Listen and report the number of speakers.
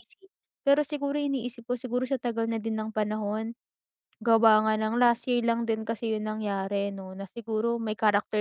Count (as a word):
one